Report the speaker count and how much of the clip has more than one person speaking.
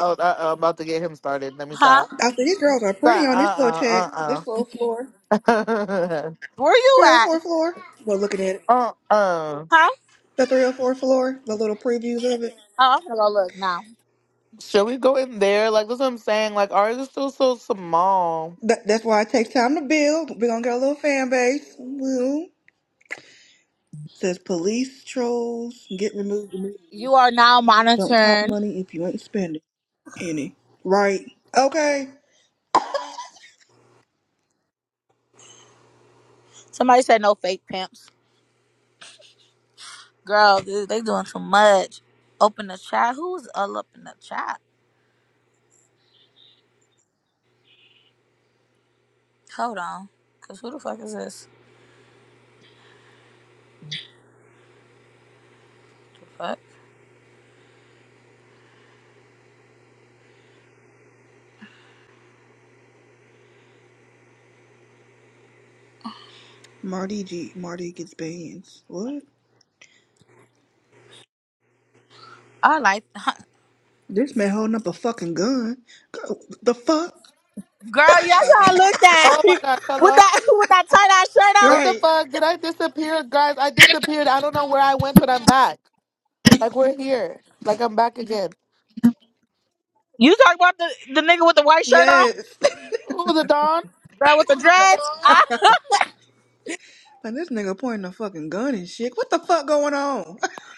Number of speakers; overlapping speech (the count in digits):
3, about 4%